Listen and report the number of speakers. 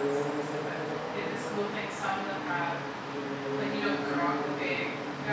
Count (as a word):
one